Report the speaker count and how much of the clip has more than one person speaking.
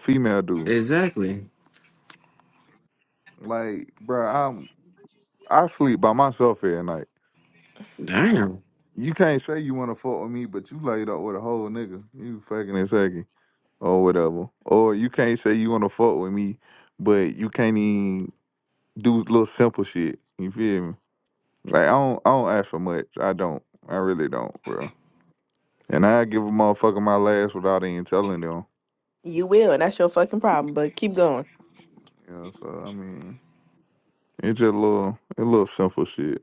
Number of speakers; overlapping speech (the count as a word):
three, under 1%